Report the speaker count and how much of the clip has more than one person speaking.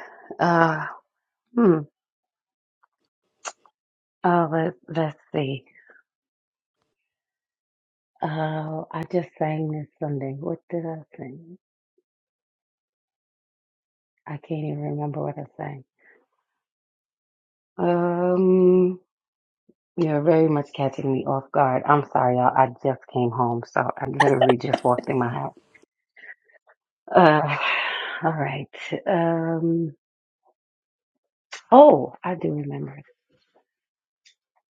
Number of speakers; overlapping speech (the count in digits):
1, no overlap